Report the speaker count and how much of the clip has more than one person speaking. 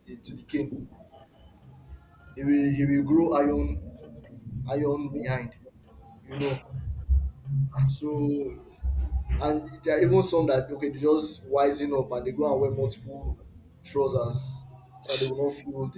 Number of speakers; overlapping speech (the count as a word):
one, no overlap